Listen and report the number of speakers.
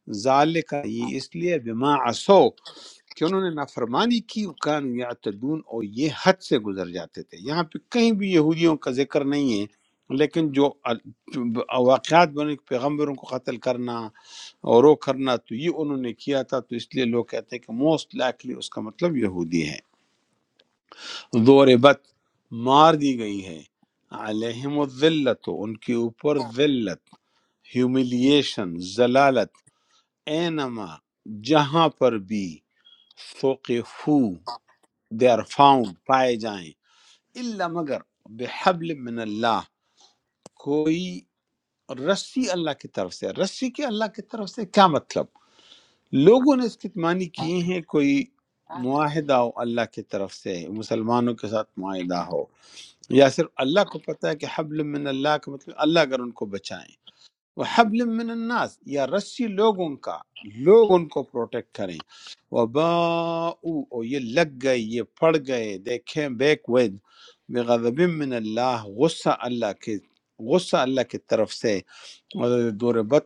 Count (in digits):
1